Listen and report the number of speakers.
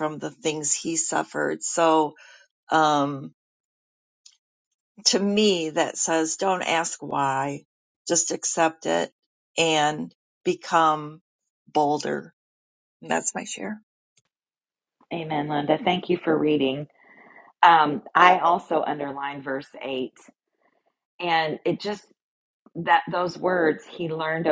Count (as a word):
two